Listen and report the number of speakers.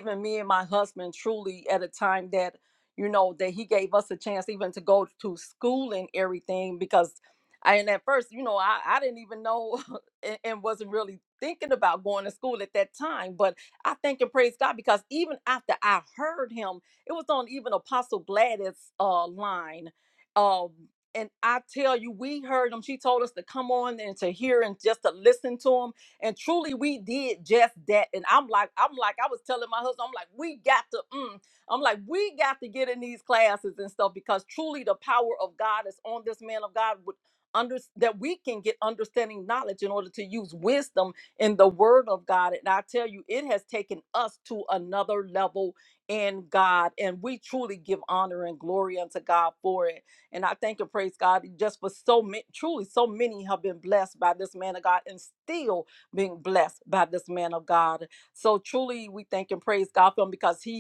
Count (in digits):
1